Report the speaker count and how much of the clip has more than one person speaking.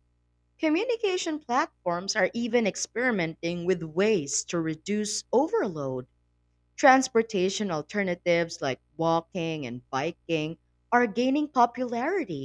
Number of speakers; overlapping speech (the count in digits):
1, no overlap